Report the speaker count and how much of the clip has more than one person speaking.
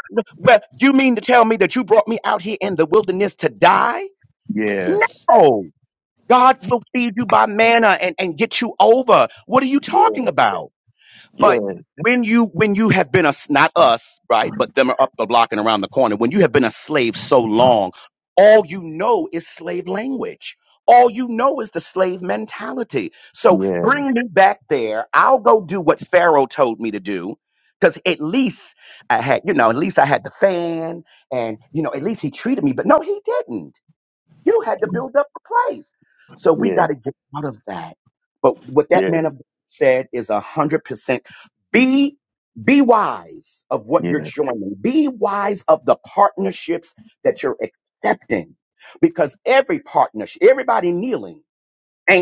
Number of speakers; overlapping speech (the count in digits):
2, about 4%